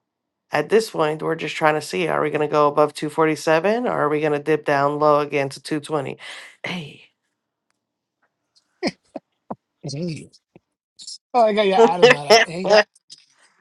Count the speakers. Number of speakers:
2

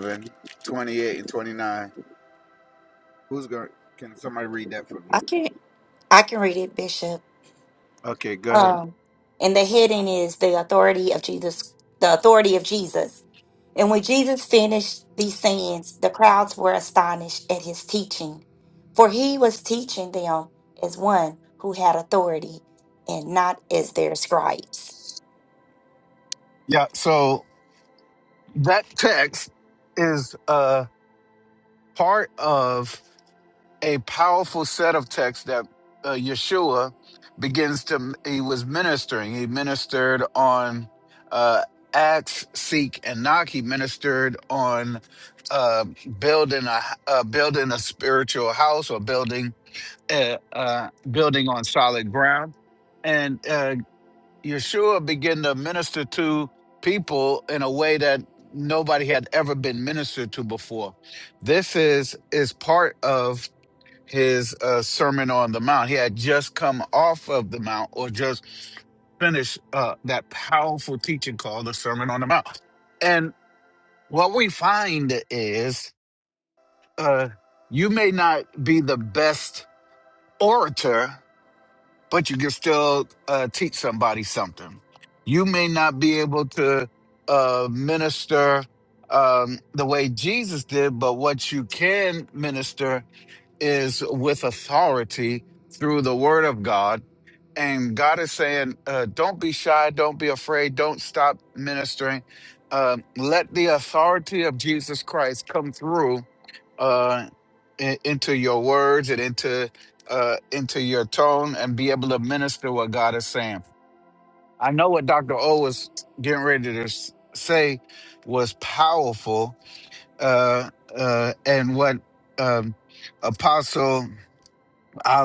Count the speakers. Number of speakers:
2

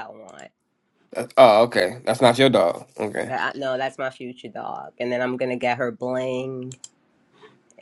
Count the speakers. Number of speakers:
2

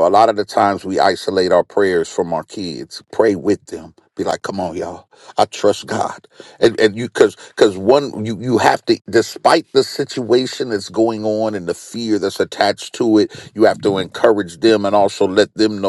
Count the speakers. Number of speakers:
1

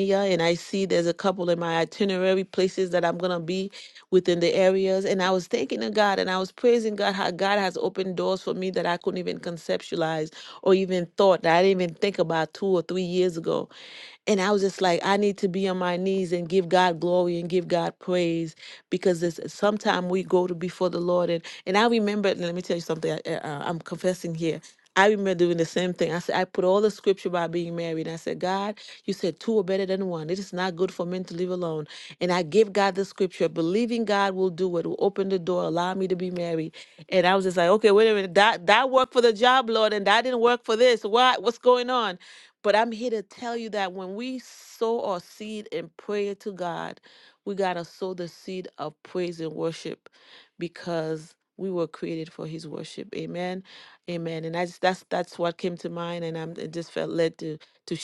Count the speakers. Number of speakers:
1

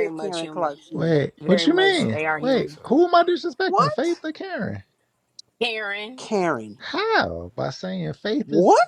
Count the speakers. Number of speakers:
3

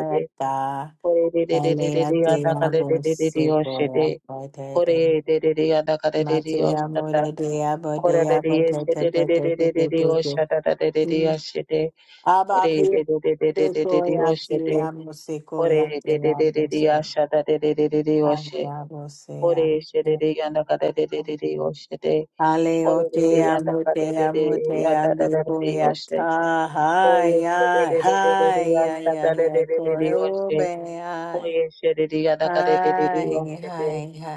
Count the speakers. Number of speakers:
2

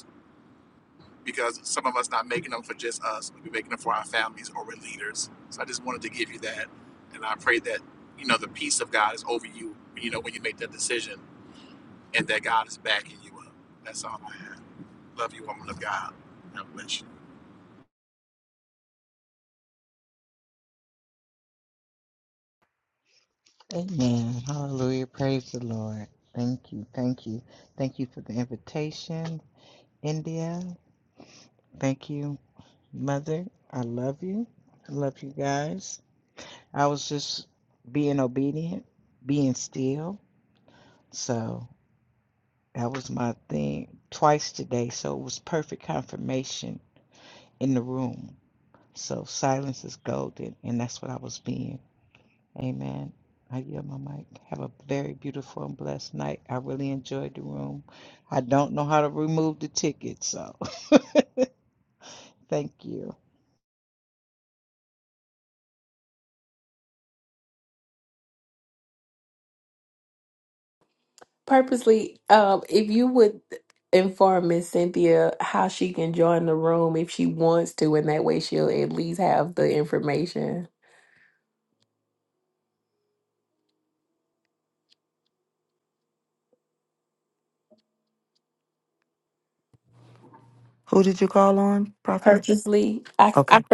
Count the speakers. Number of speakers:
4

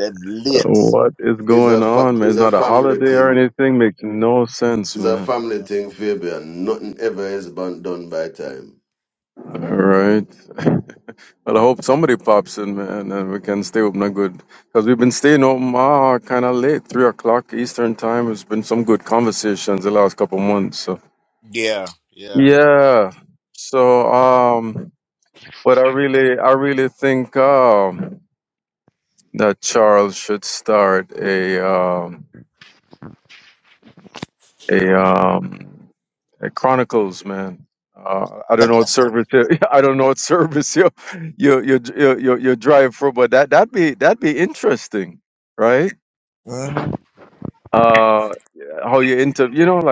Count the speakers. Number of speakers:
3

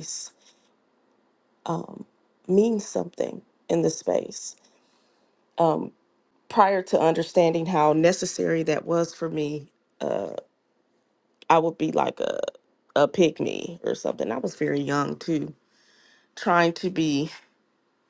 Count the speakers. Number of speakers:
1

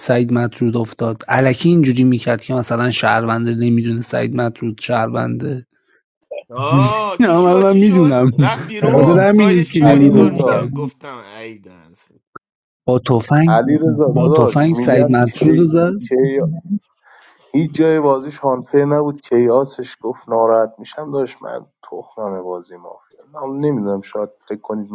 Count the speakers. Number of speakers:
3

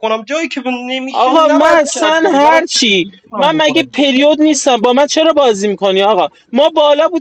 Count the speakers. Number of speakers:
2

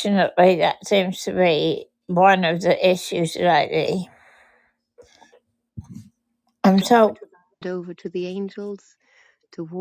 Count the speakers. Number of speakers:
2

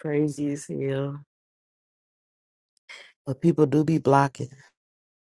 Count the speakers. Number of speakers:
1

